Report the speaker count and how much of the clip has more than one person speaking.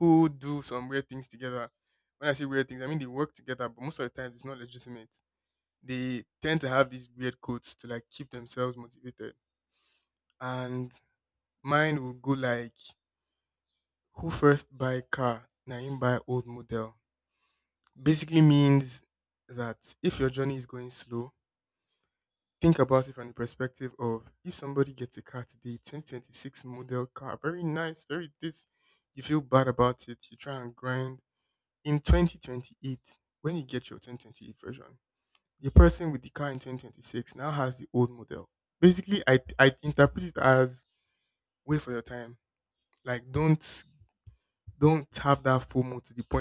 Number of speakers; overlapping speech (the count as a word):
one, no overlap